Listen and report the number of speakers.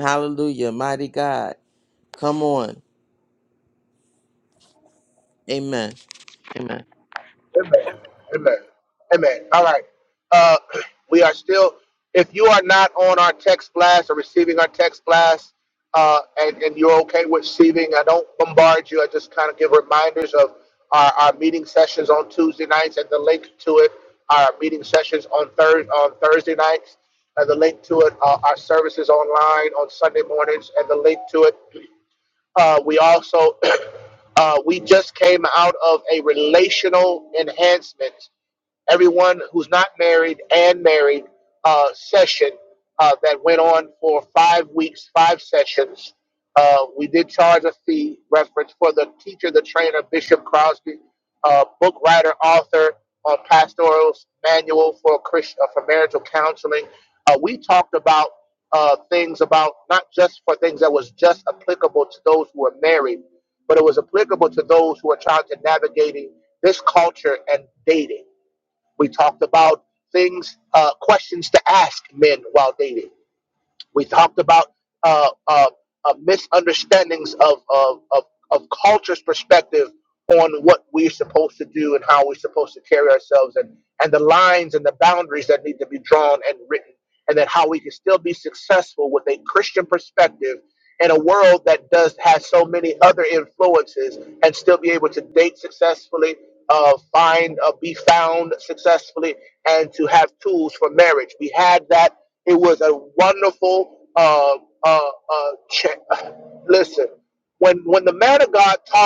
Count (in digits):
2